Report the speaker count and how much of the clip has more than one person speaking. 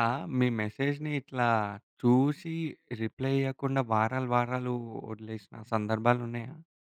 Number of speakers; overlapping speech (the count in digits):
1, no overlap